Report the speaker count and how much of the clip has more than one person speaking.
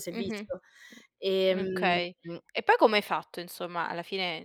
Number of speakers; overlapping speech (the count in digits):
2, about 19%